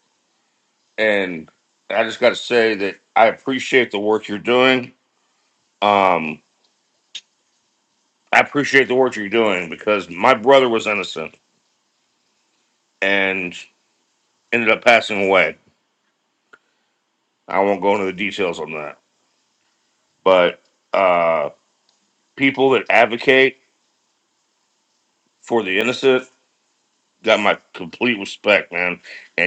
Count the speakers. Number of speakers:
1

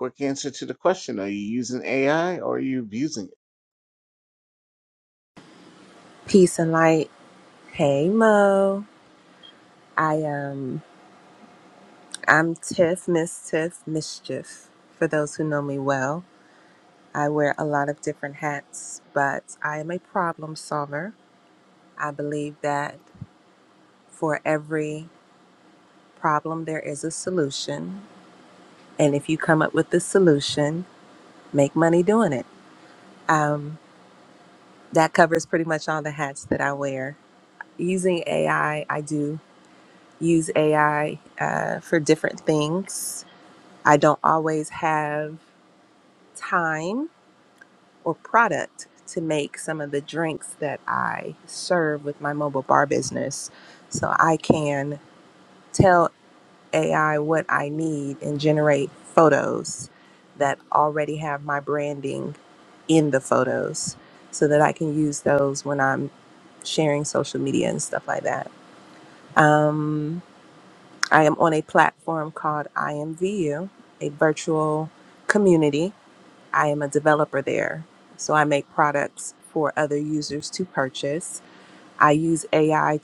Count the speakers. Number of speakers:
2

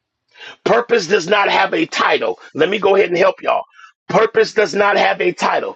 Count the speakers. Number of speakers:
1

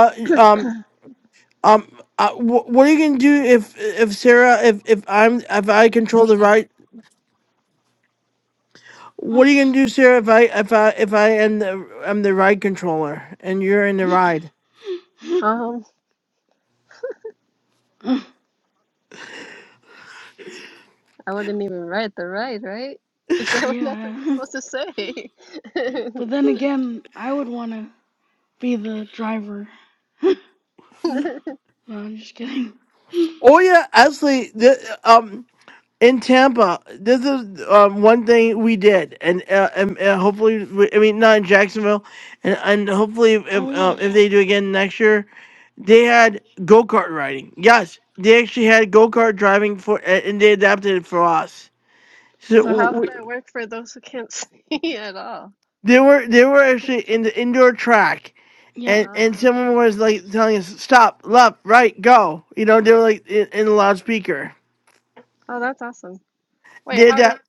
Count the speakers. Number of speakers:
3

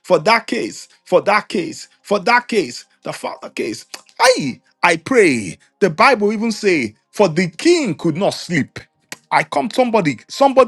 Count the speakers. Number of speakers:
1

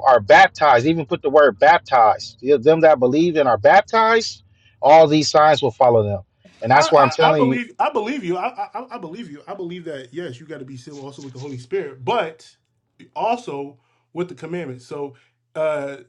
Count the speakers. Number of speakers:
2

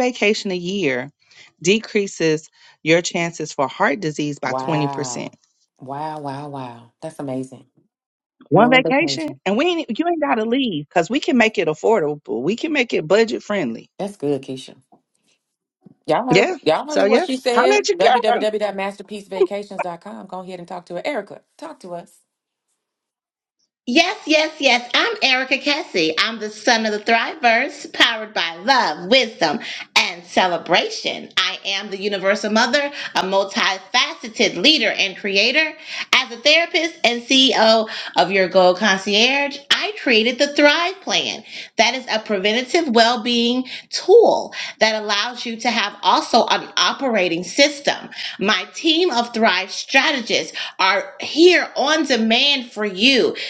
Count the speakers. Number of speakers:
3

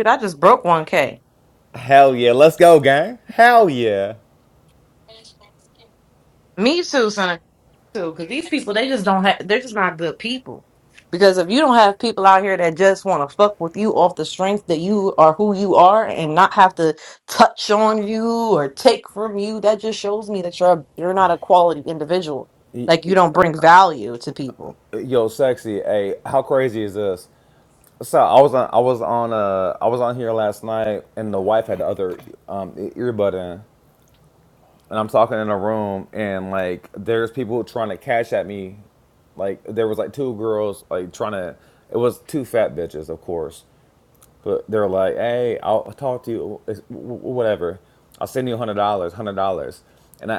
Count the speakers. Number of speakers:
2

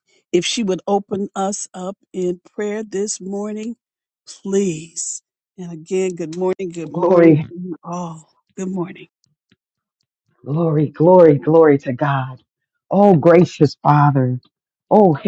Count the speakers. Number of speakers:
2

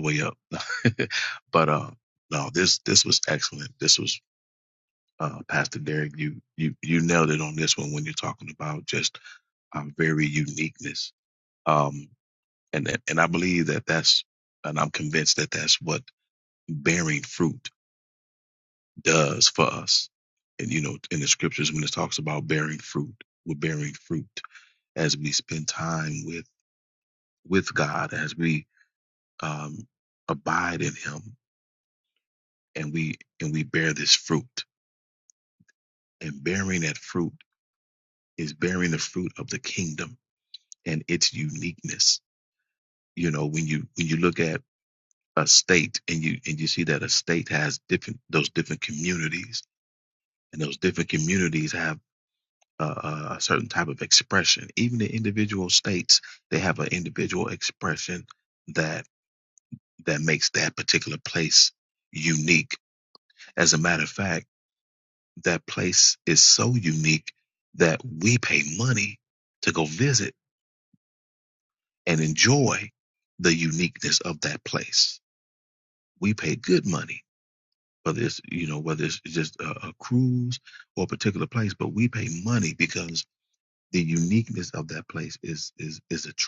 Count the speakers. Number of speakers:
1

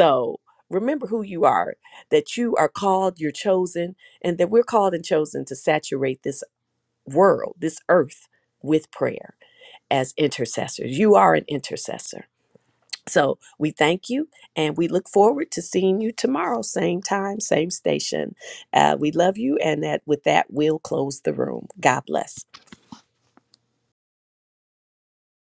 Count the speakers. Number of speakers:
1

